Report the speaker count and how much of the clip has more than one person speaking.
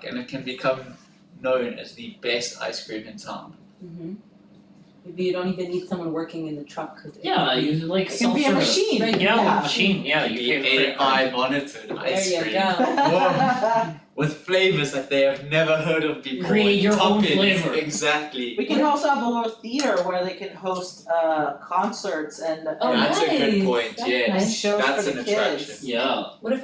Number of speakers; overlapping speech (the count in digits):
4, about 34%